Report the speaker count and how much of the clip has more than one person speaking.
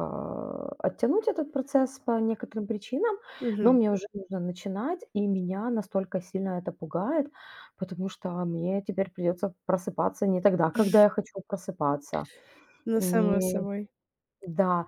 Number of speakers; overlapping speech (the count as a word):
two, about 6%